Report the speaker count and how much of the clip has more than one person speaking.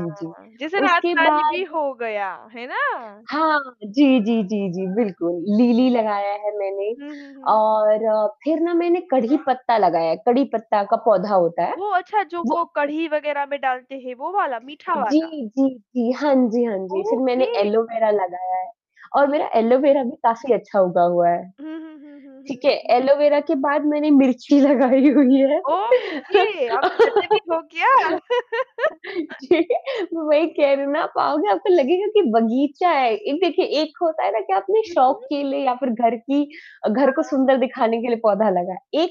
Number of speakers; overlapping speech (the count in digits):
2, about 11%